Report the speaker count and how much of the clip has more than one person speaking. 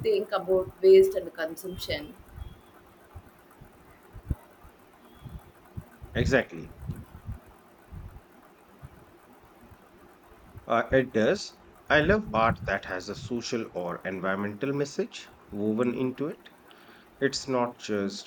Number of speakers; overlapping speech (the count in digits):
2, no overlap